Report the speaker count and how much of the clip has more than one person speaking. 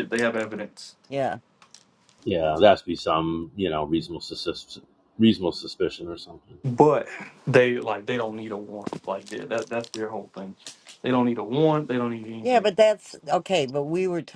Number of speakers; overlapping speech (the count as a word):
three, about 2%